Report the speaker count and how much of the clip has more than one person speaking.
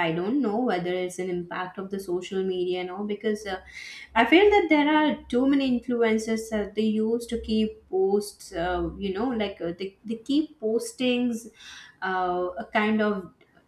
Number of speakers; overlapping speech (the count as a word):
one, no overlap